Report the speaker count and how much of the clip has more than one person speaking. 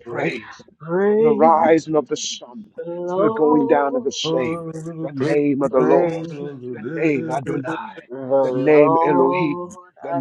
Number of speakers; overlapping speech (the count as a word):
three, about 49%